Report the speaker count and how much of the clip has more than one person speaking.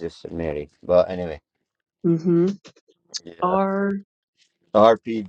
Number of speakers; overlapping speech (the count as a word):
two, about 3%